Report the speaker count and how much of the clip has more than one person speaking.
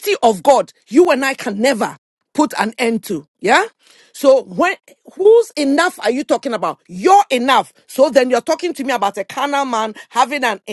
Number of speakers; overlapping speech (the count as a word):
one, no overlap